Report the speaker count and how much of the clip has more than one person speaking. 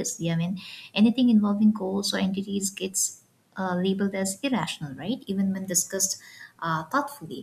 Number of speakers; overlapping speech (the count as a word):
one, no overlap